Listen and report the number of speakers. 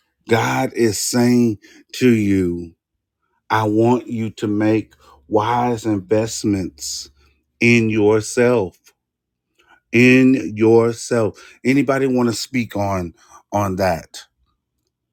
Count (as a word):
one